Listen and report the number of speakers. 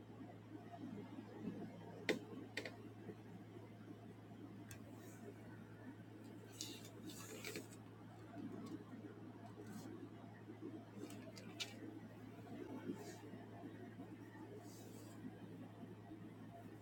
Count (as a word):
zero